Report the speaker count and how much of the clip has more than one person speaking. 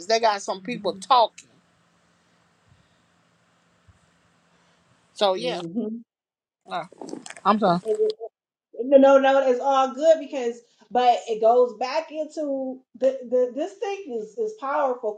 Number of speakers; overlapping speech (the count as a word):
two, about 3%